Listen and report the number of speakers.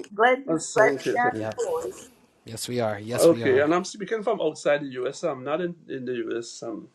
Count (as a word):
three